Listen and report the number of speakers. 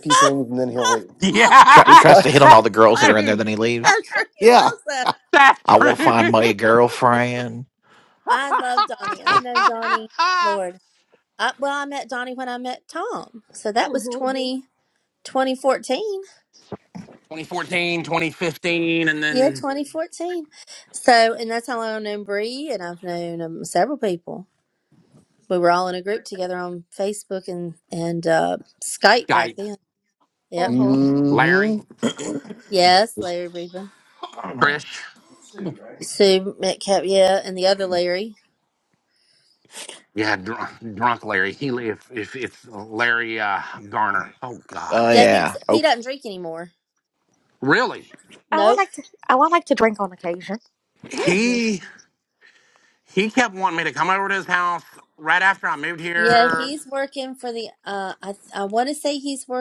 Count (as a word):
five